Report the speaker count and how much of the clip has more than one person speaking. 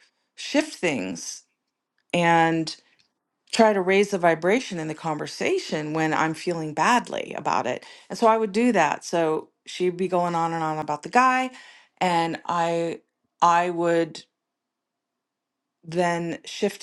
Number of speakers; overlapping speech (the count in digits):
1, no overlap